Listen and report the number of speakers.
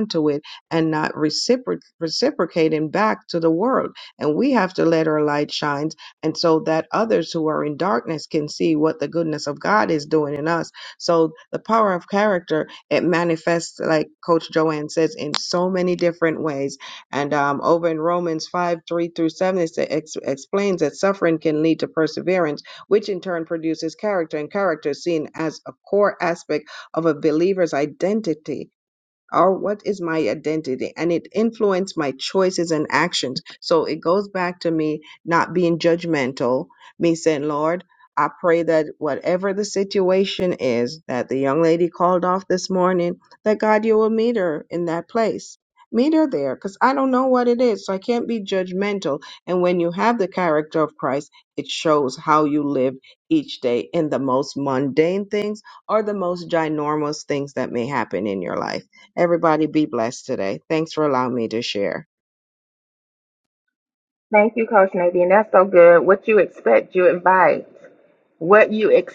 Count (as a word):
two